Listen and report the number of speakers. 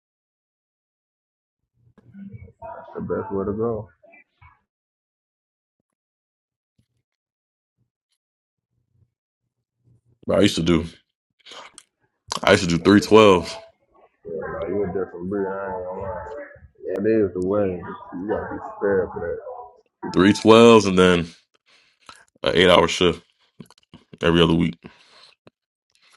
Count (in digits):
2